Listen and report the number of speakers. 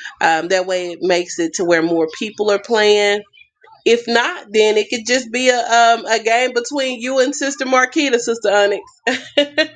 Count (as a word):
one